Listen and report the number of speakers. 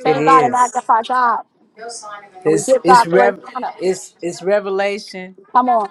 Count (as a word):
two